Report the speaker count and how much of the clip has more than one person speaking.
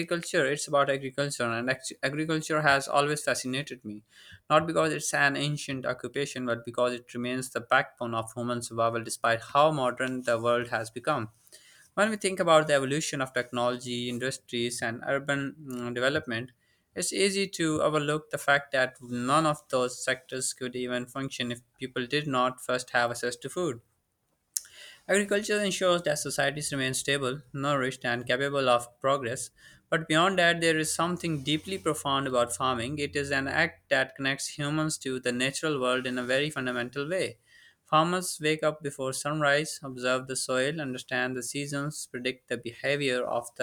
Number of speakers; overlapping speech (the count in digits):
1, no overlap